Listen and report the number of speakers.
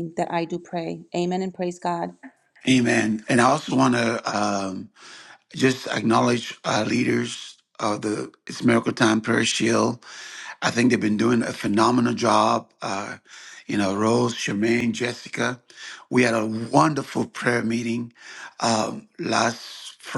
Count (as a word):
two